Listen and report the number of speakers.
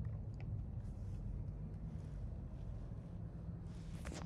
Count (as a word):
zero